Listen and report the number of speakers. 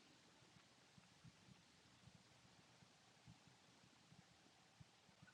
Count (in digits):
0